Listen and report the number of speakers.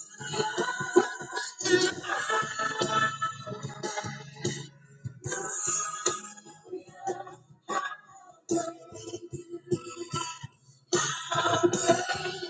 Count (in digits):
0